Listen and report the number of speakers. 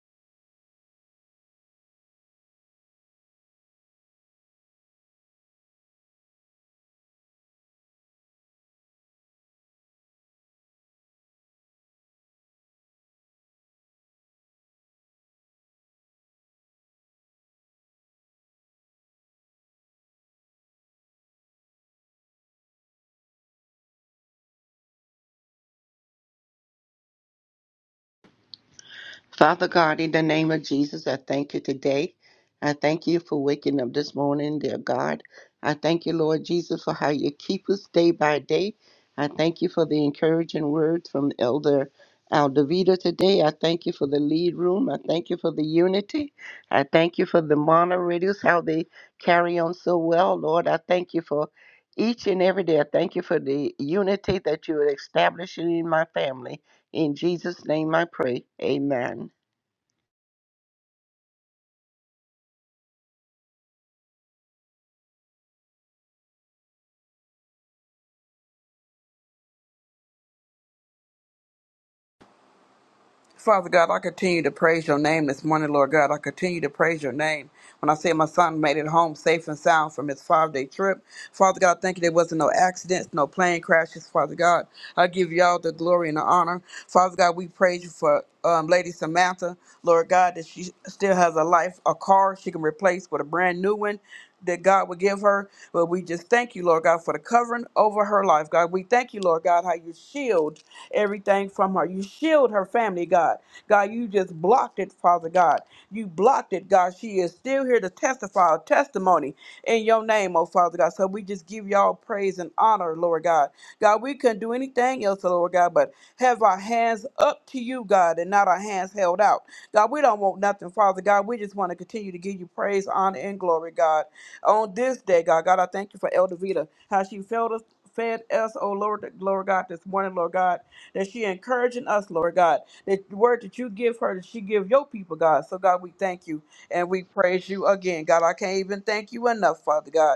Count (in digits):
2